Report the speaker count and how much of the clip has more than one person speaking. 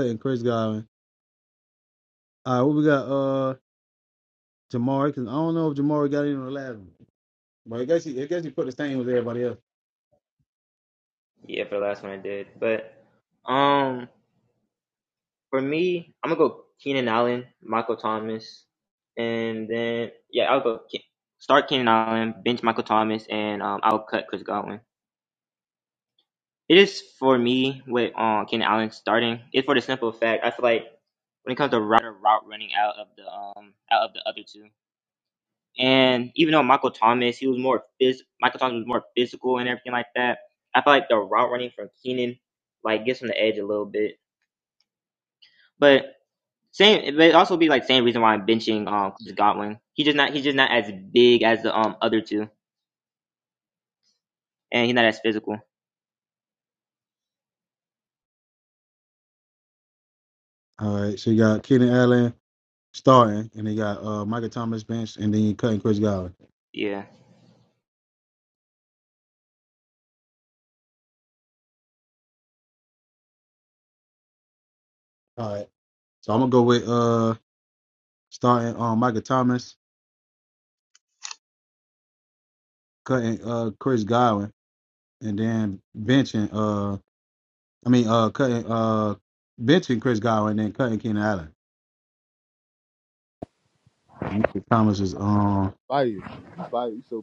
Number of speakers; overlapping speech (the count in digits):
3, no overlap